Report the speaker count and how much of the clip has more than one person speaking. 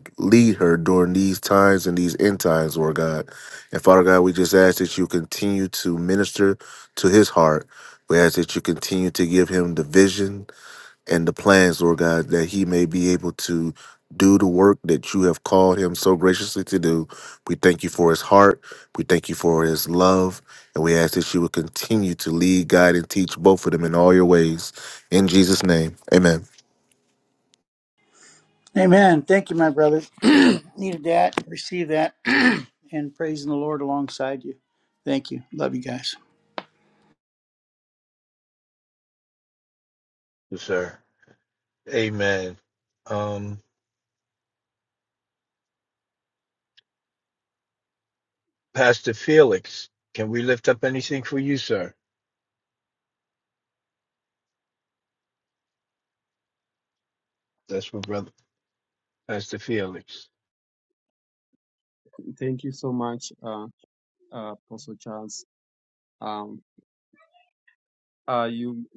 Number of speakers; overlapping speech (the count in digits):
4, no overlap